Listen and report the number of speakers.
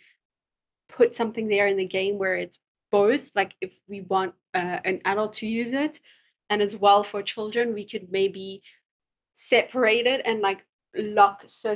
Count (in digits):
1